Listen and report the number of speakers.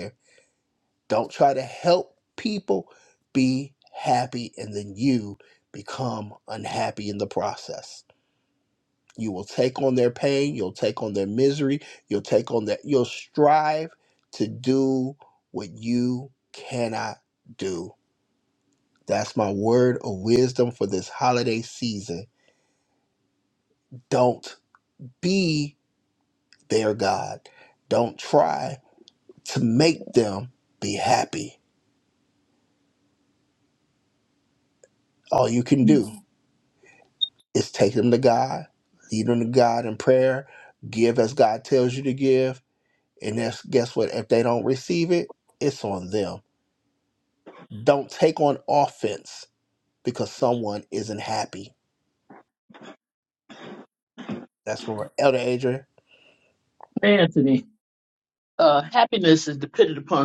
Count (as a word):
two